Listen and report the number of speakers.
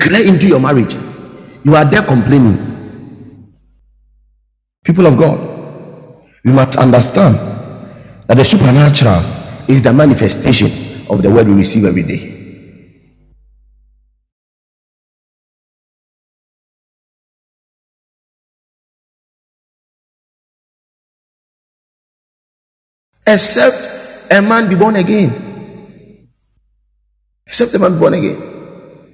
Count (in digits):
1